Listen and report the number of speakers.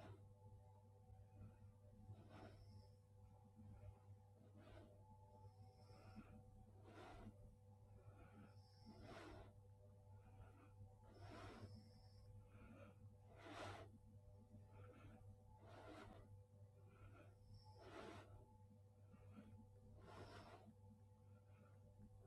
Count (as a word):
zero